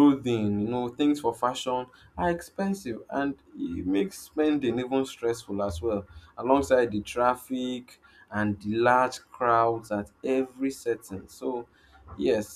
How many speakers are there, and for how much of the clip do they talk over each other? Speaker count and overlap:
one, no overlap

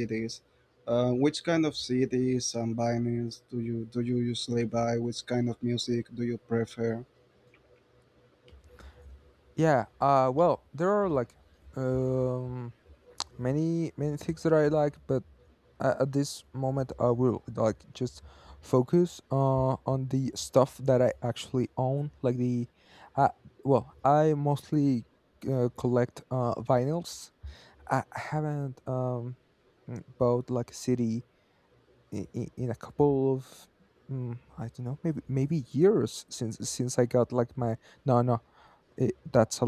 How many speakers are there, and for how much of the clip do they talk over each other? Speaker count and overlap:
two, no overlap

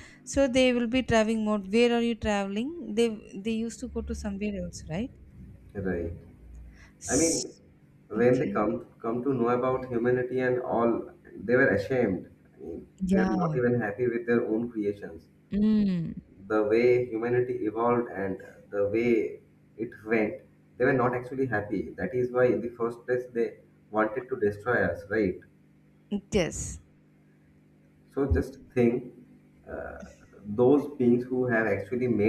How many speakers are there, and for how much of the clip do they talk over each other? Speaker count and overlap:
two, about 3%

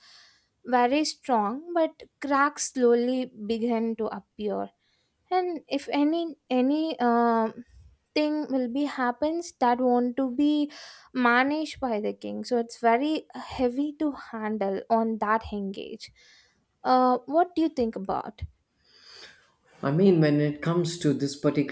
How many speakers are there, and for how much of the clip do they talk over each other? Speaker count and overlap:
two, no overlap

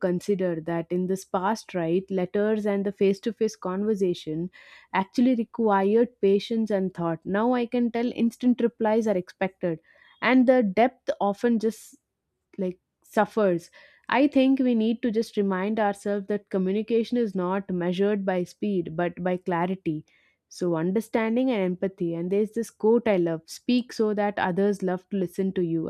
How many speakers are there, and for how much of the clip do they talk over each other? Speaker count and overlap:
one, no overlap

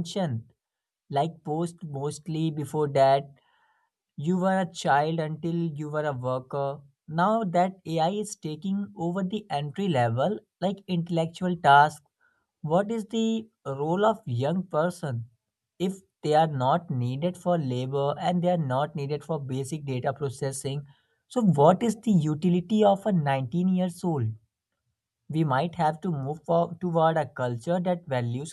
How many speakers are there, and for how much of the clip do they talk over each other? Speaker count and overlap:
one, no overlap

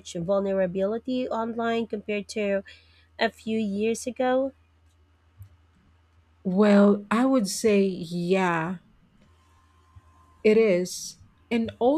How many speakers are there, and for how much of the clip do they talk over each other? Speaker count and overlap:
two, no overlap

